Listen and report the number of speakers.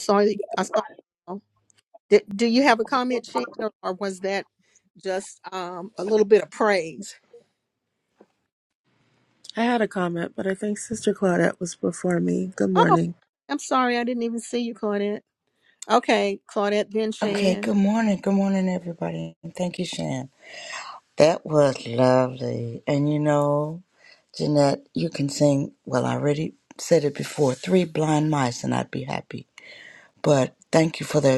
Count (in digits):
3